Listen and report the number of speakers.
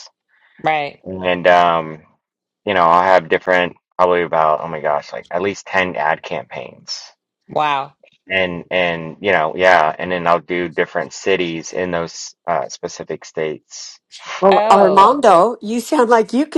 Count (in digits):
3